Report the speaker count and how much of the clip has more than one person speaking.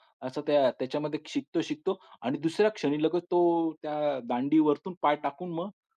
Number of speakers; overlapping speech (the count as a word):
one, no overlap